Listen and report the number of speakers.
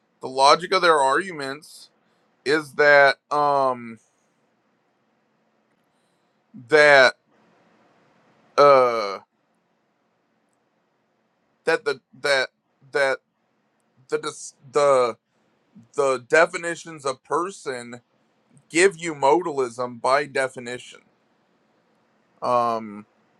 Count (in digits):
1